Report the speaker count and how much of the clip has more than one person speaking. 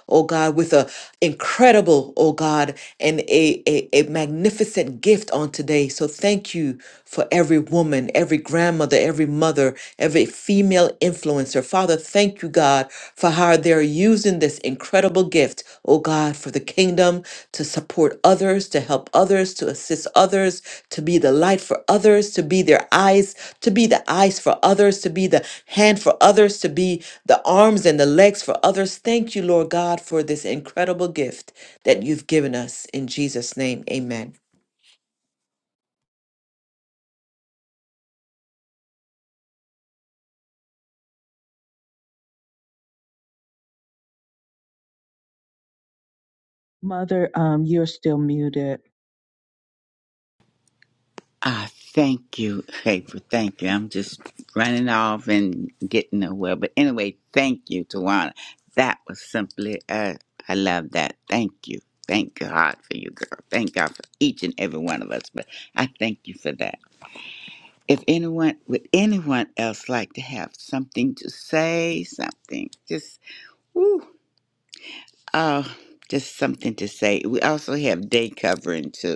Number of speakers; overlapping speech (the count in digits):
3, no overlap